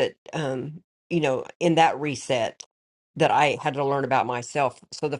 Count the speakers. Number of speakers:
one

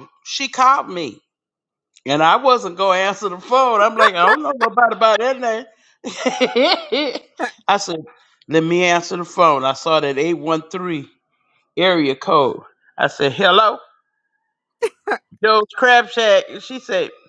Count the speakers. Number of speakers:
one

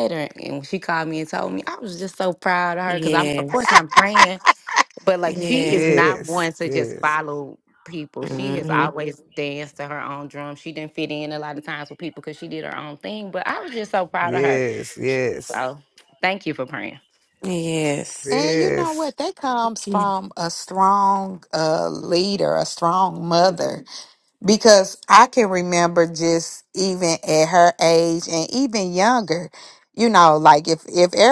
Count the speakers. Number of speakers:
four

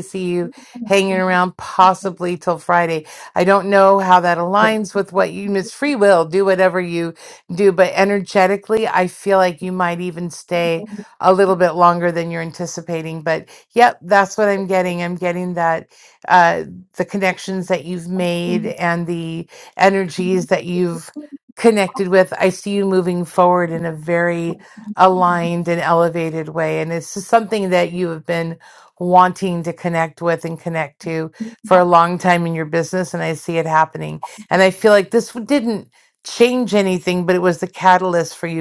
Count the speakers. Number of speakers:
one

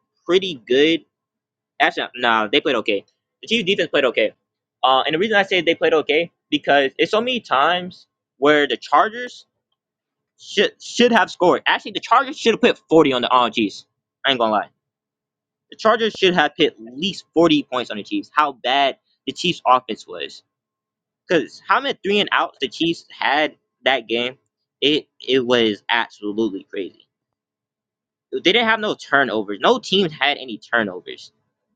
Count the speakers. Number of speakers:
one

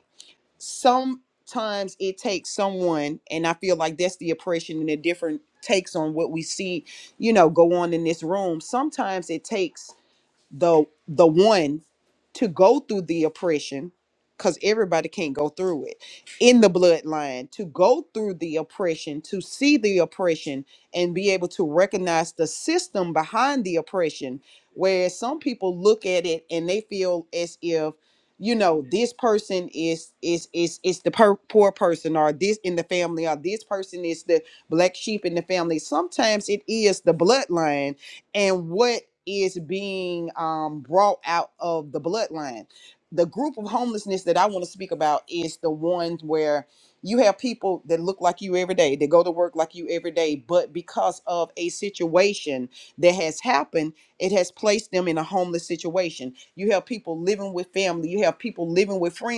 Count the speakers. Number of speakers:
one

